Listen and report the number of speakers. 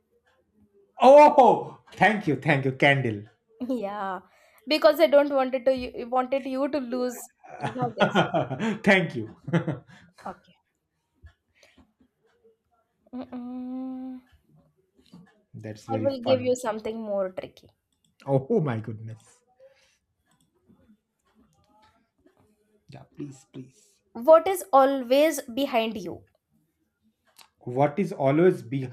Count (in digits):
2